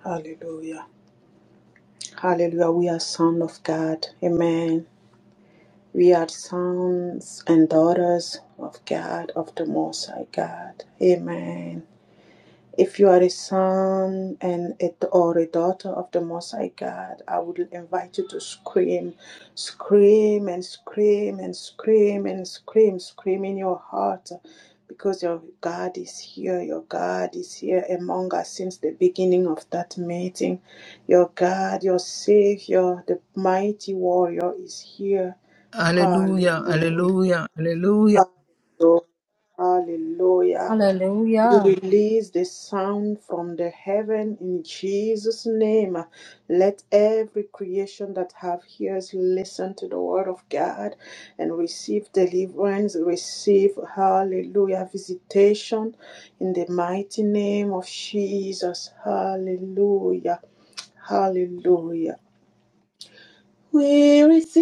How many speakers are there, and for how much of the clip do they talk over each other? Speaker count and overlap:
3, about 2%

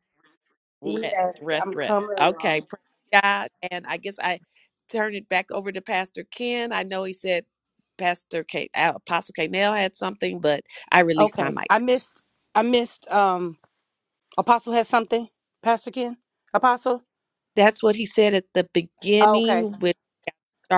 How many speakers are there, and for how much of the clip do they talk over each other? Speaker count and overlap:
2, about 13%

